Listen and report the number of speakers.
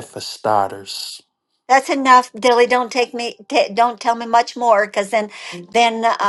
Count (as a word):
two